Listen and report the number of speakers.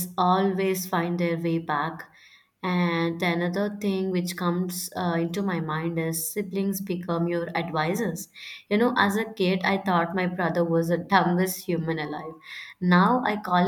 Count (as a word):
one